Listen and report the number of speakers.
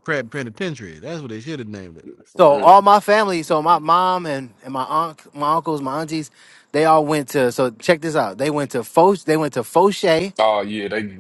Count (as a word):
three